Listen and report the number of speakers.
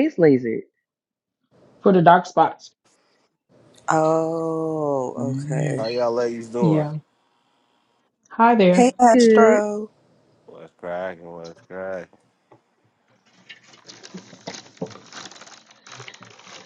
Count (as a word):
four